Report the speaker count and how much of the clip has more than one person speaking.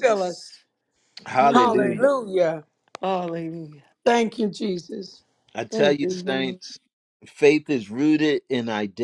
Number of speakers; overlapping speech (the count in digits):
3, about 16%